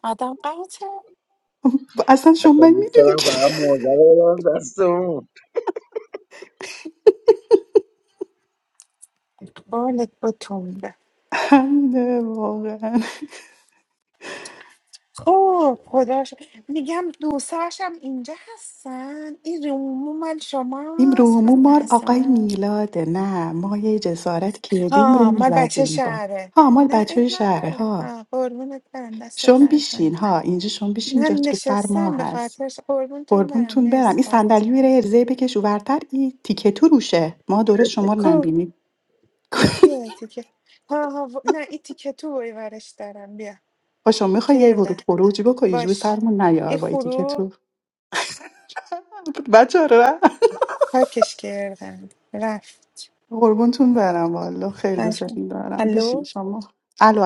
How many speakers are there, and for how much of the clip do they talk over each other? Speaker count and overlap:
three, about 20%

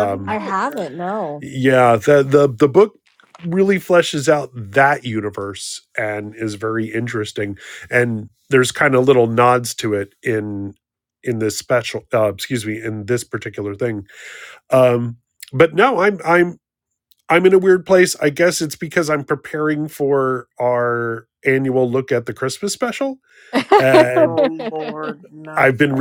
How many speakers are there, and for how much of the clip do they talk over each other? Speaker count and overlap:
three, about 6%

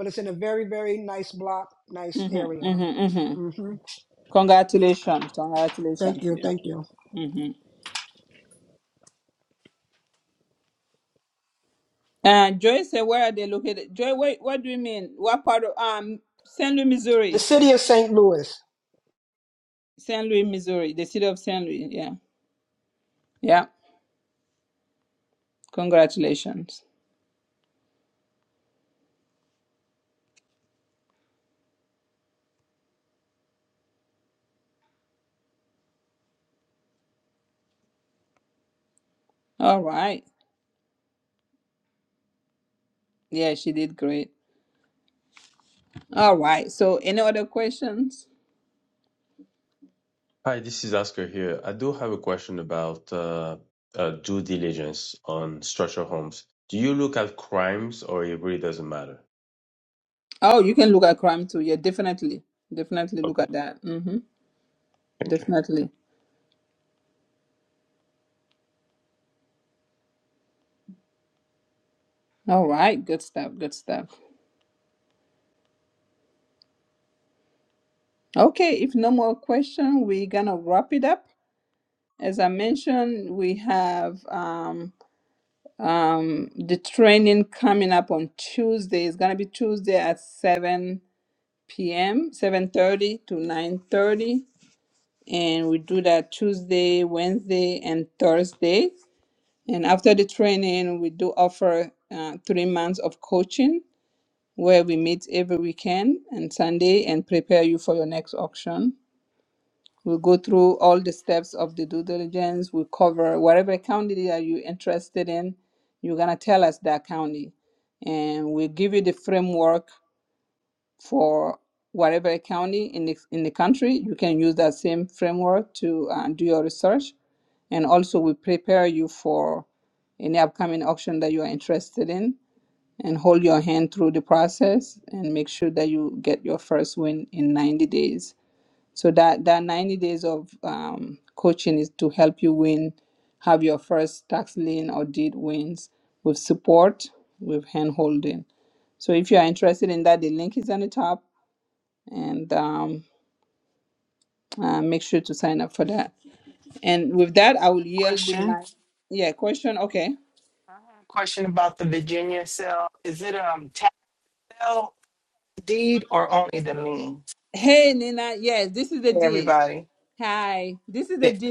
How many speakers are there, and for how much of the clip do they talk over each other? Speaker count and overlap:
four, about 2%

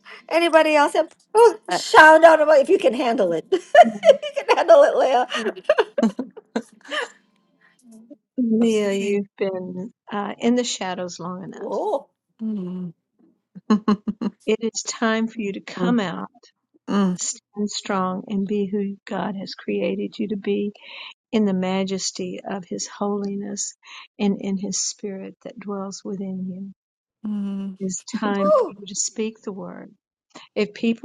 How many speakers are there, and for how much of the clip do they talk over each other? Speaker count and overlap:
three, about 2%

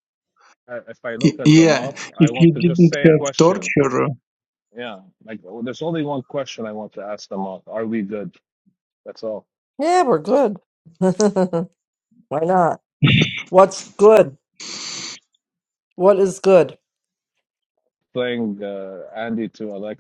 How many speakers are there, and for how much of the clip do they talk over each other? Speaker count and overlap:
three, about 11%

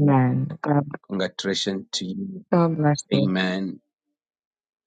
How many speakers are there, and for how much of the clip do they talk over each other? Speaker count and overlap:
two, about 7%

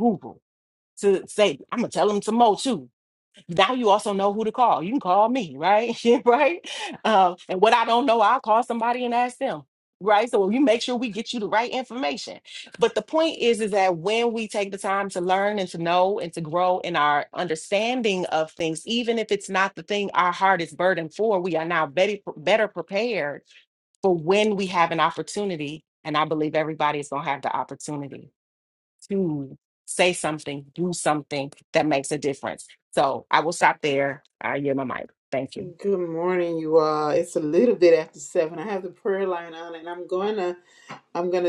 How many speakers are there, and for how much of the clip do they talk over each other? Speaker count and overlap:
two, no overlap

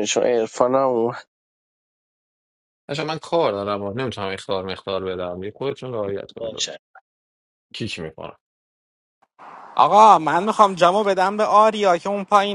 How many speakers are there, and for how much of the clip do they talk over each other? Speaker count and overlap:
three, about 2%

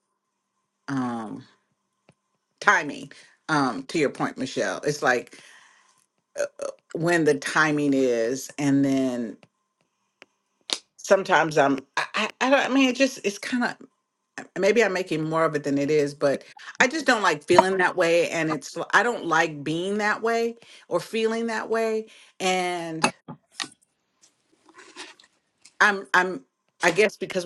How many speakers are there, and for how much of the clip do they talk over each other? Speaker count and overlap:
one, no overlap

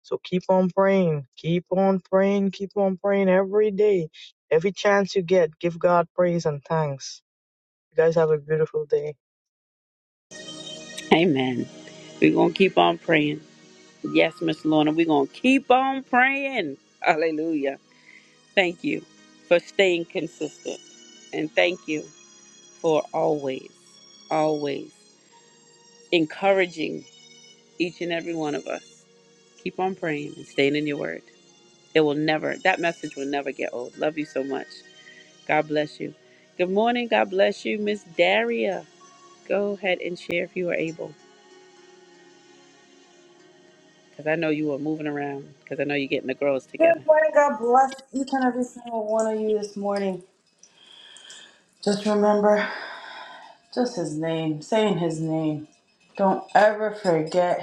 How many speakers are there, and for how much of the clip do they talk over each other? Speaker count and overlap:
three, under 1%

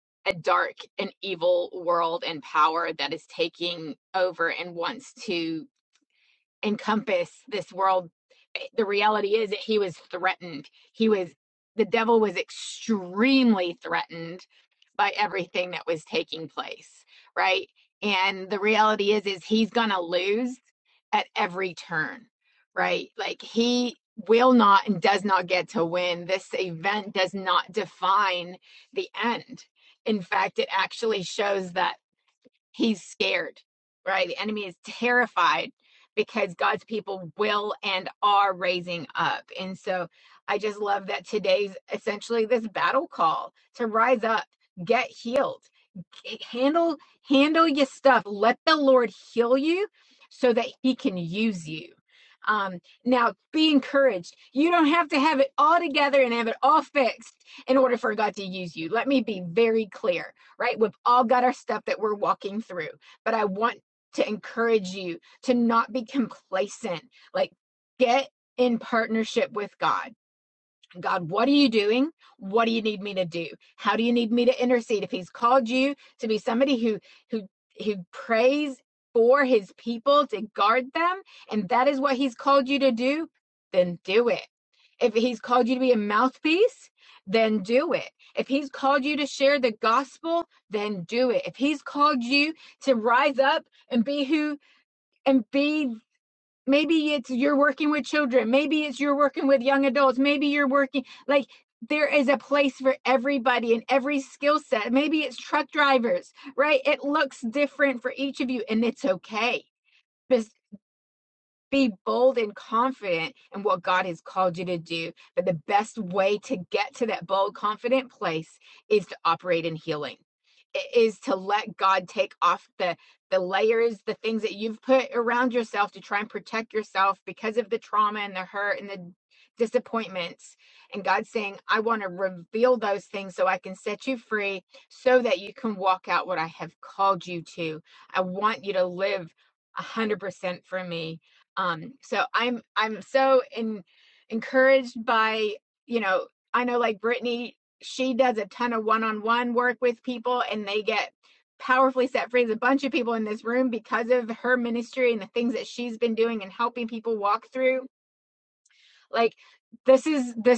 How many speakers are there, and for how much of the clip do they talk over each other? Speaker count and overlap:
one, no overlap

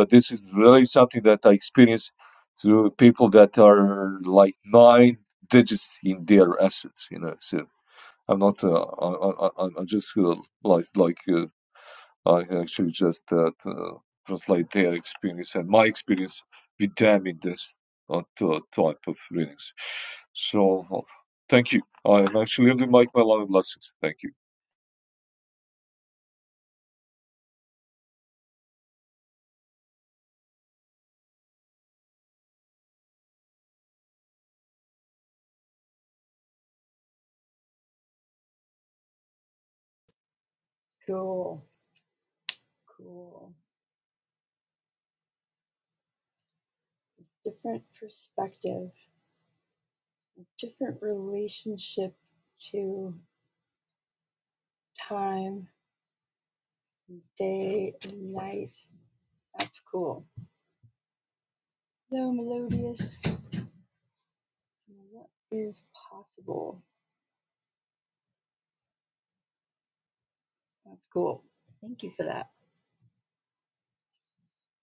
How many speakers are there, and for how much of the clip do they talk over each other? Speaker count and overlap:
two, no overlap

